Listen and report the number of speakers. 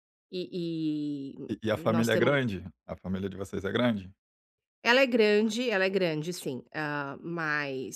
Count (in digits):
2